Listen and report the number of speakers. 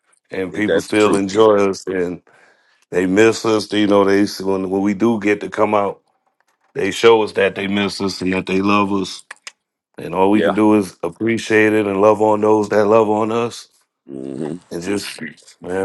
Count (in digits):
2